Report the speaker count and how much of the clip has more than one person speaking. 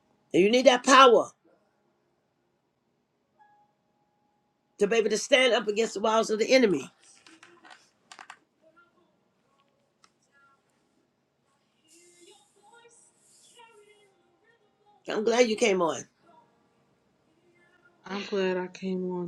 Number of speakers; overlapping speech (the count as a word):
two, no overlap